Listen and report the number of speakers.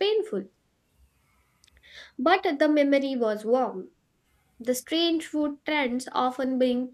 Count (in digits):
1